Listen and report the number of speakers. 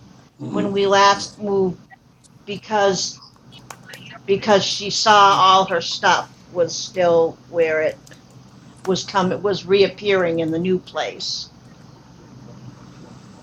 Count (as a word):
one